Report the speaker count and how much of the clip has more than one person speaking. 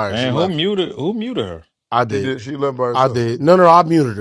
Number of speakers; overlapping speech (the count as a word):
three, about 20%